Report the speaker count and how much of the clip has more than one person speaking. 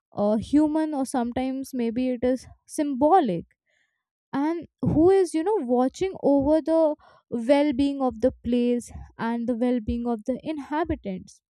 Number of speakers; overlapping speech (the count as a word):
one, no overlap